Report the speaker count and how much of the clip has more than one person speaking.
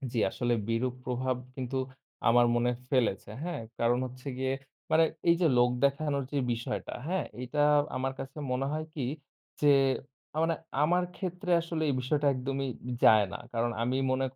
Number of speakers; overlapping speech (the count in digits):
1, no overlap